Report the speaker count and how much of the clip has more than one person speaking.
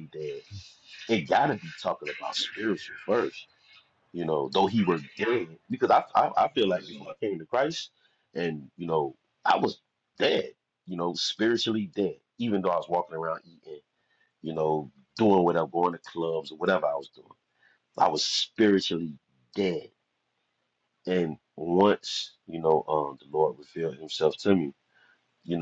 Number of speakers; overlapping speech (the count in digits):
1, no overlap